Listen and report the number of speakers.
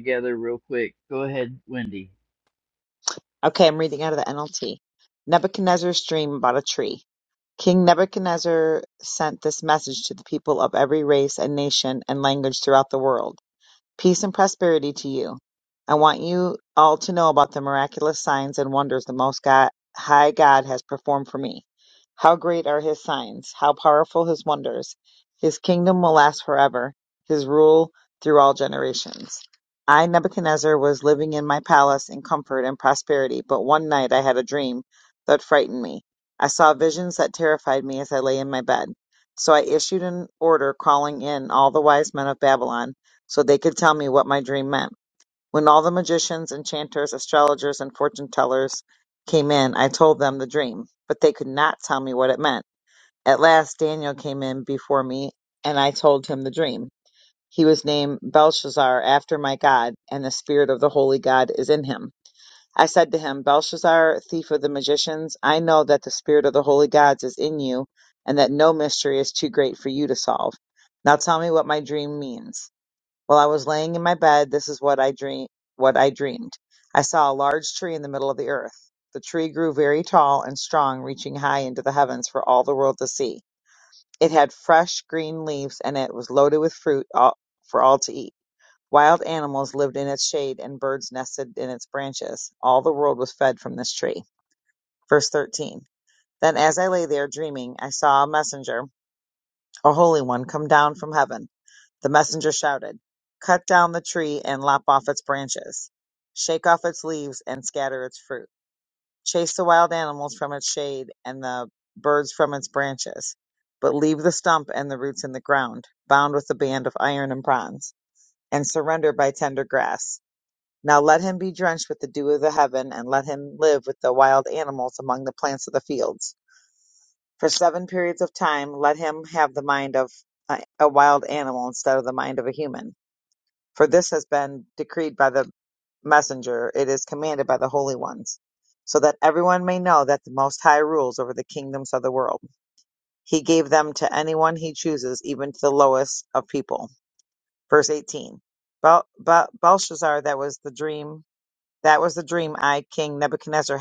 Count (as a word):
two